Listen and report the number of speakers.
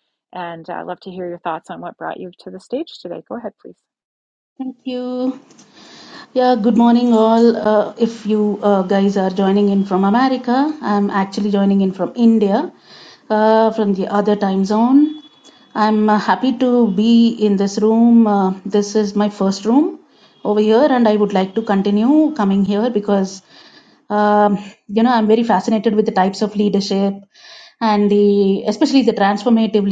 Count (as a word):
two